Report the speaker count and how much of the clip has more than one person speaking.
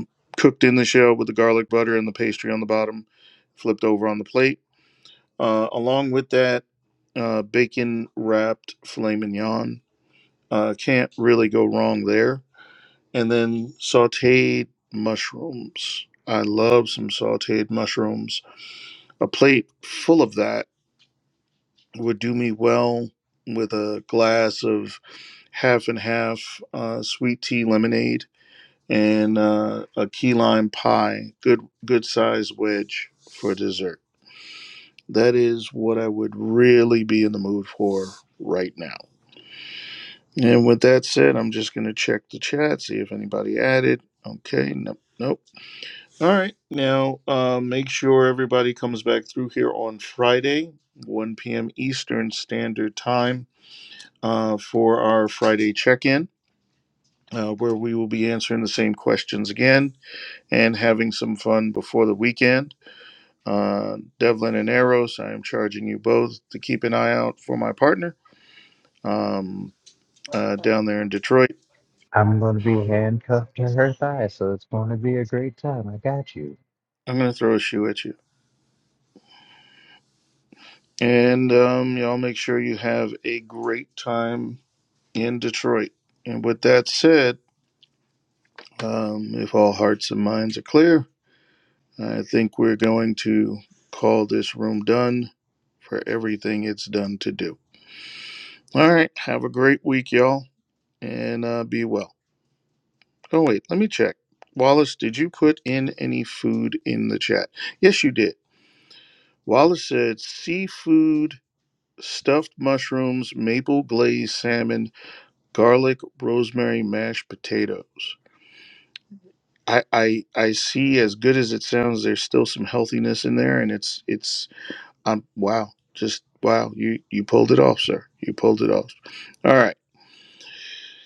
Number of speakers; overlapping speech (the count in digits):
2, no overlap